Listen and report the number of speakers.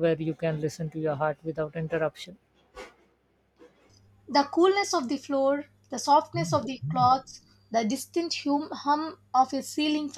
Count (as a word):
two